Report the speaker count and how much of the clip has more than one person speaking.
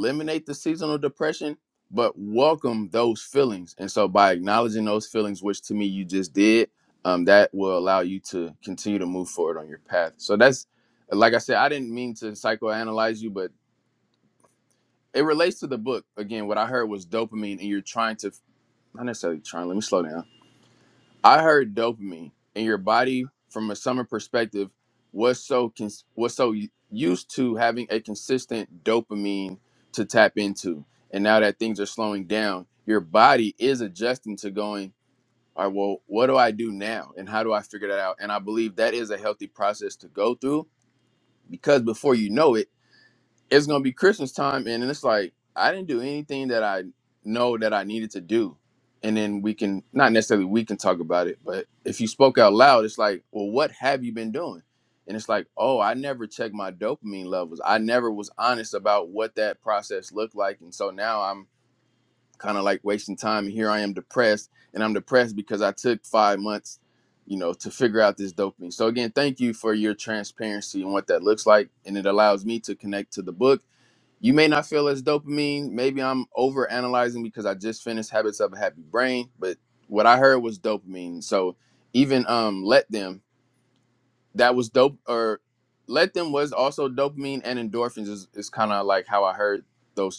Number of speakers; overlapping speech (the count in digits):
1, no overlap